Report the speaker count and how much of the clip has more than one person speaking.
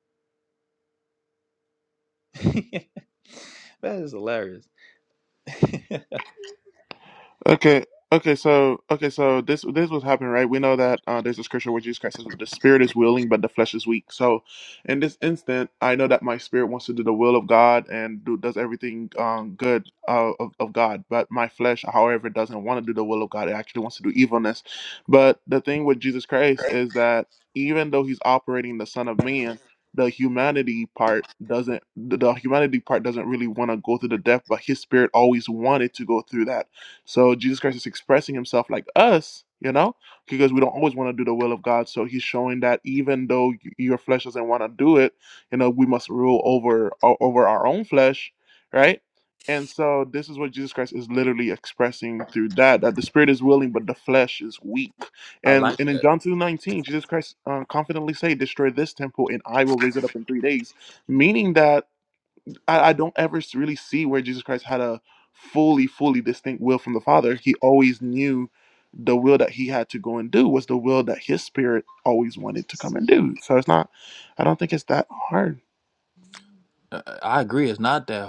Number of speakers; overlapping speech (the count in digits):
2, about 1%